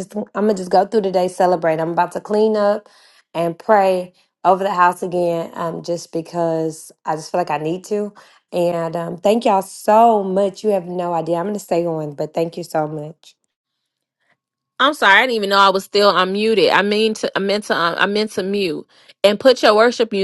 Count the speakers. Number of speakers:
2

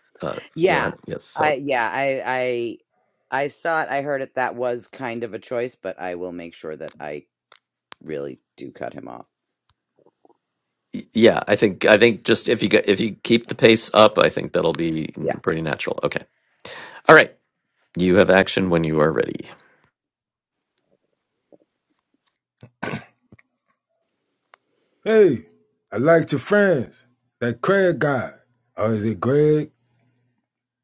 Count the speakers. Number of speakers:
3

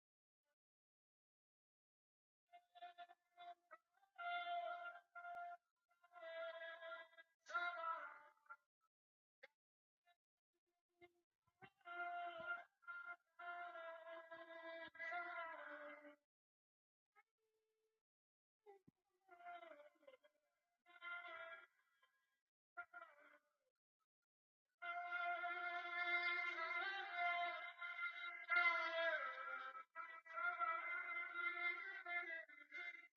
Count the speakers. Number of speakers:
0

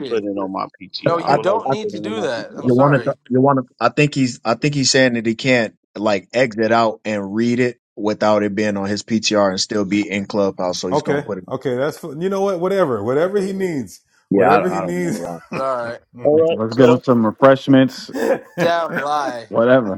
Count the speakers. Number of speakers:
5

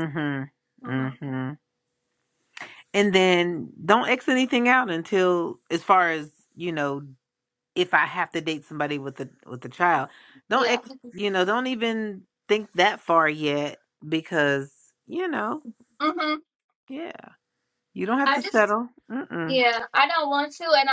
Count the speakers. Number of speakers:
2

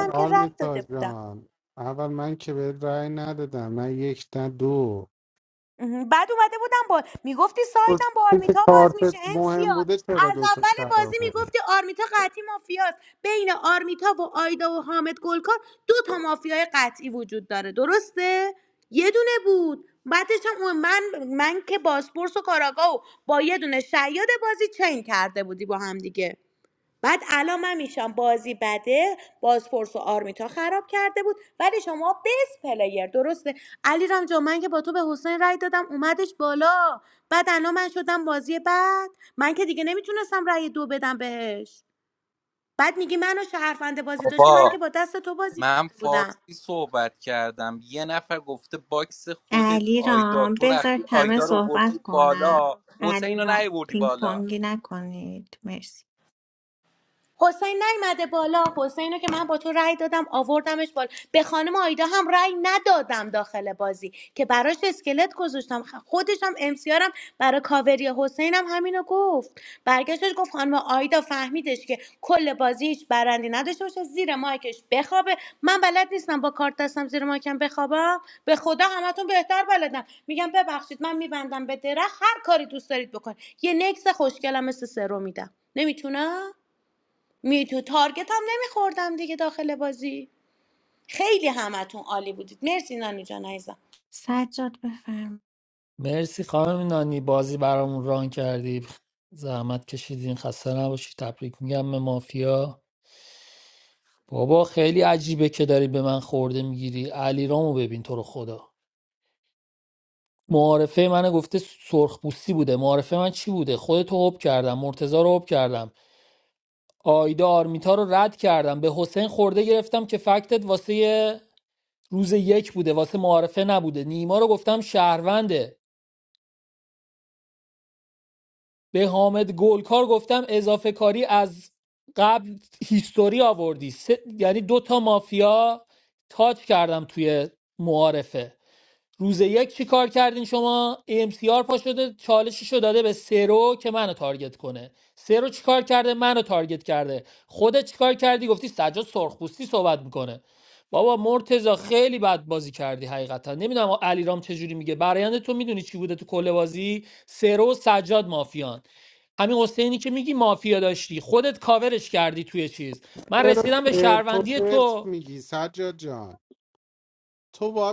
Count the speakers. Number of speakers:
5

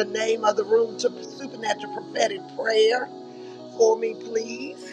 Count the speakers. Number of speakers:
1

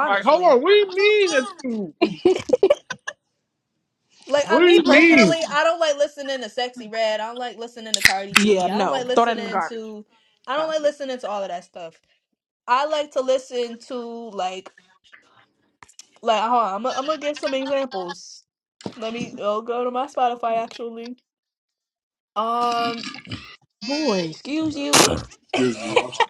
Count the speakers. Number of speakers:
3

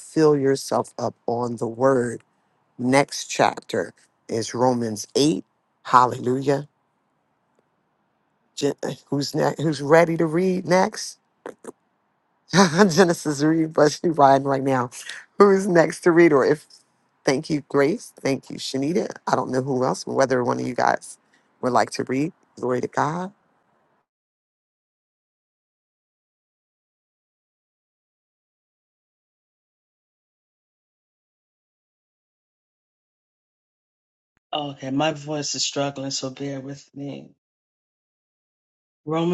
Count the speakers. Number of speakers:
2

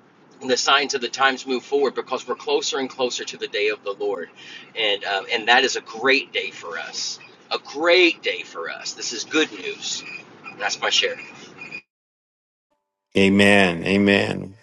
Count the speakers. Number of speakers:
2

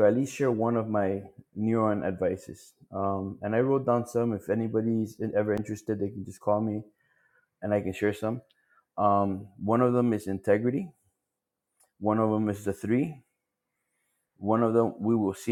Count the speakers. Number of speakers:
1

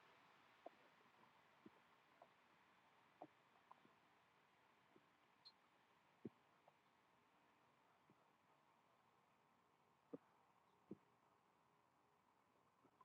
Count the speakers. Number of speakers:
0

